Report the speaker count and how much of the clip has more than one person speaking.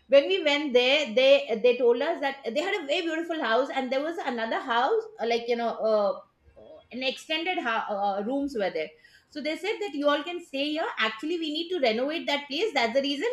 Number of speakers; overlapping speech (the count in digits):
1, no overlap